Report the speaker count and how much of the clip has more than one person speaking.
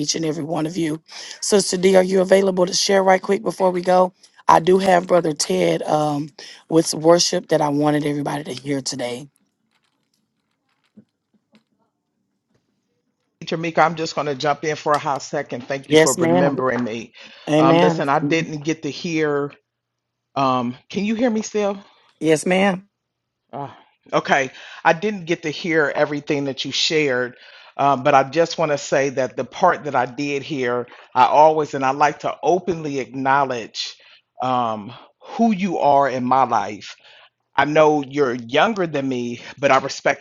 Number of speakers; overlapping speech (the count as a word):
two, about 3%